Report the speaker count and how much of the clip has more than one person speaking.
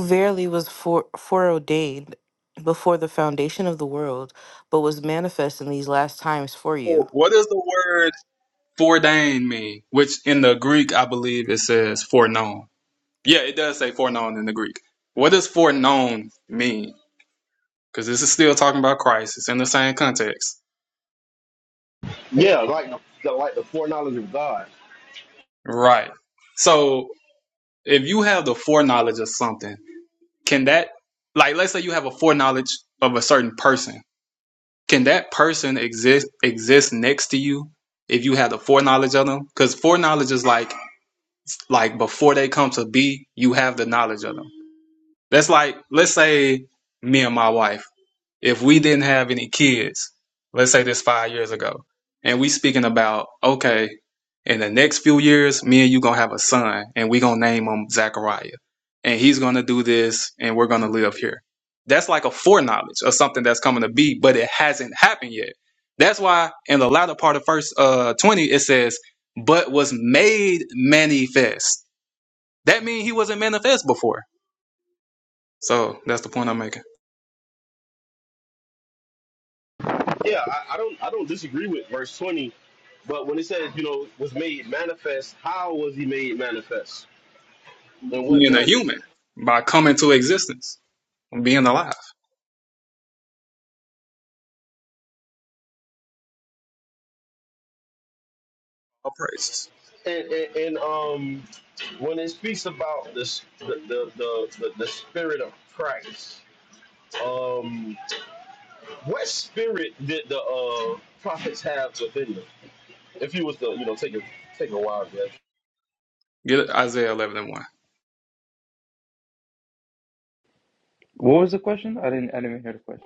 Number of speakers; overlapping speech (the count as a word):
four, about 1%